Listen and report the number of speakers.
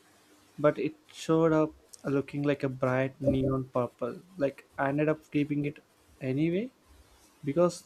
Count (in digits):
1